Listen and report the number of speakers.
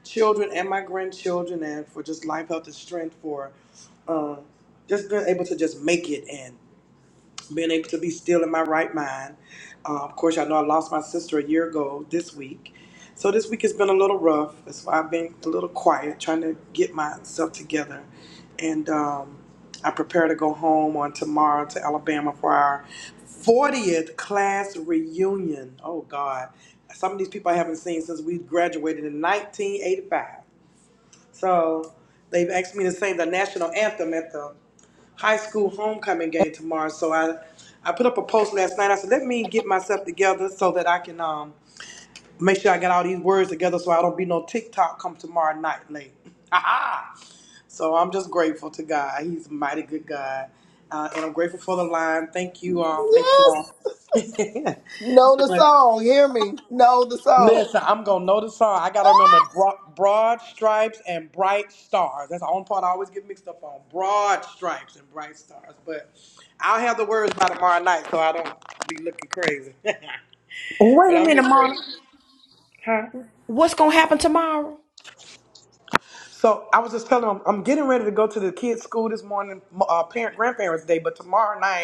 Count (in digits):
3